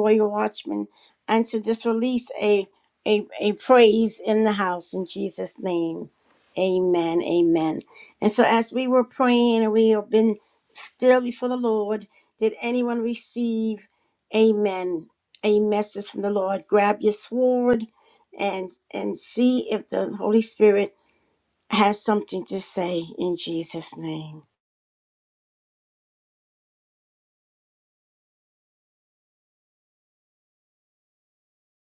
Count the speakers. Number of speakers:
1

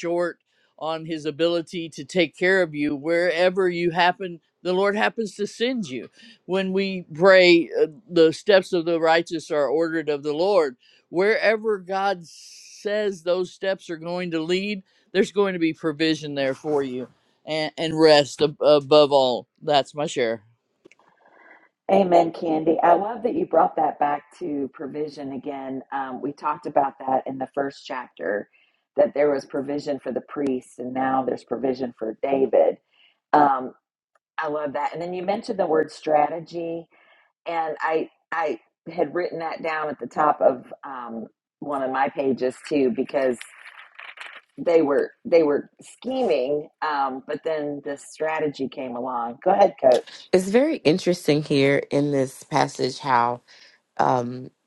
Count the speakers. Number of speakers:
3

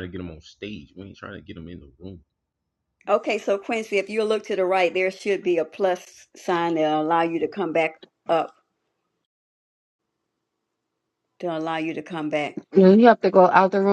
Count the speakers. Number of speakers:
3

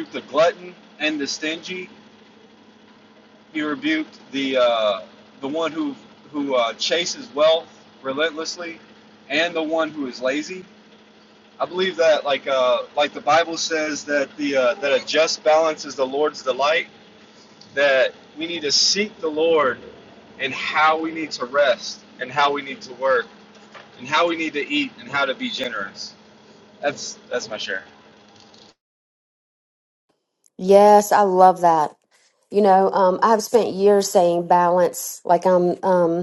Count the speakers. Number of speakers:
2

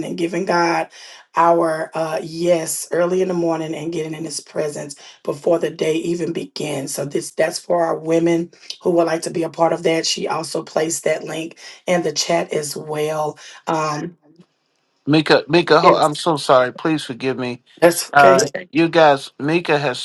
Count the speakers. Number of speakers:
2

